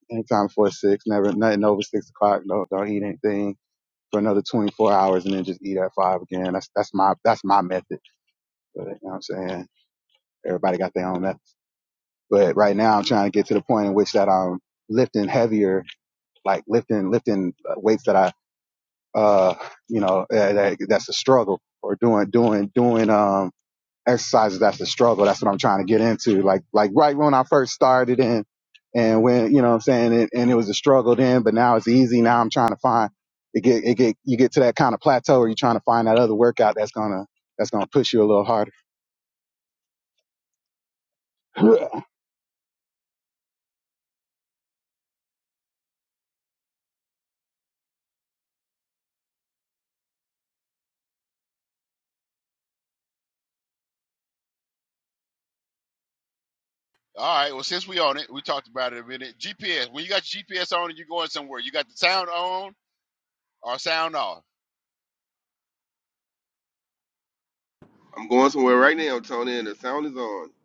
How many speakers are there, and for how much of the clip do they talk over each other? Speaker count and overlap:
three, no overlap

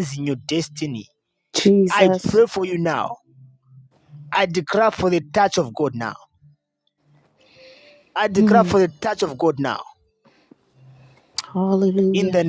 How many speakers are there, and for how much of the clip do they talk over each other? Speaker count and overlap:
two, about 10%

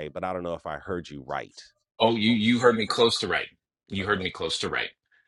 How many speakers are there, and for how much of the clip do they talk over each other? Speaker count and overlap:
two, about 5%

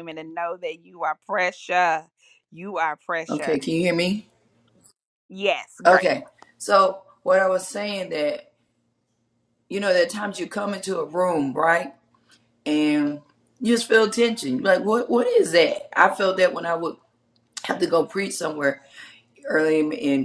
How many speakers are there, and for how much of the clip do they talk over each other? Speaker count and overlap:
two, about 3%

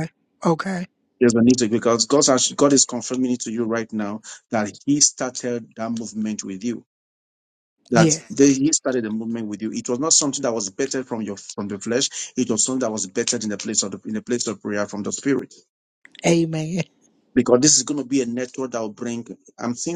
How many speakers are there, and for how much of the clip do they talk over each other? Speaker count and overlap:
two, about 2%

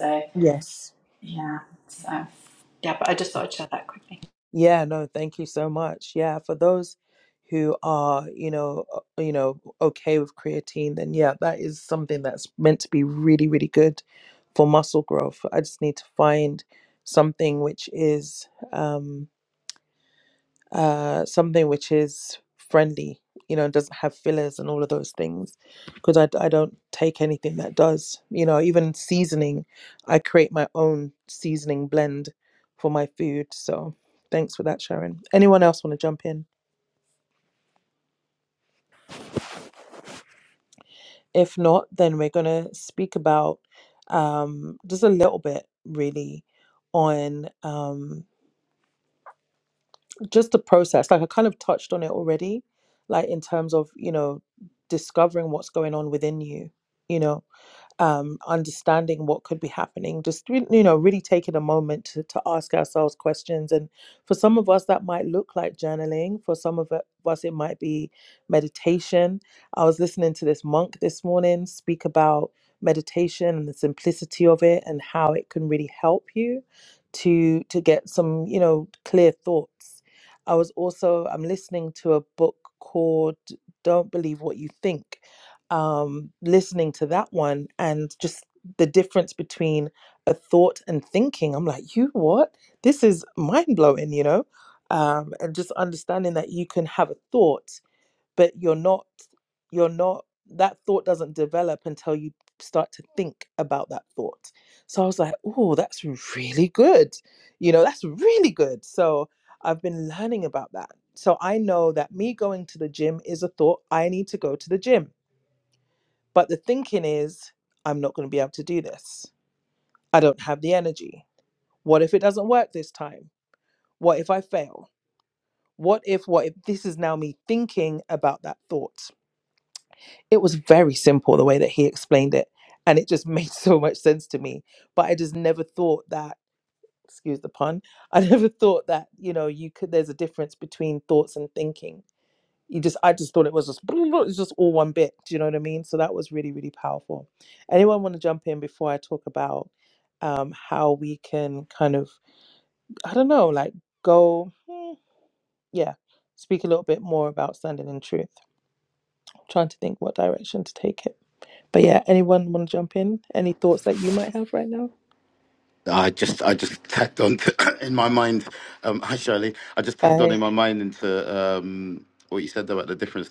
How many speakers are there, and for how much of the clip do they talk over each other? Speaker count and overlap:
three, under 1%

